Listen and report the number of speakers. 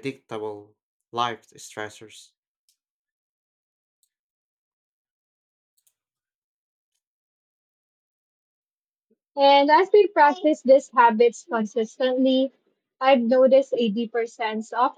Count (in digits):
2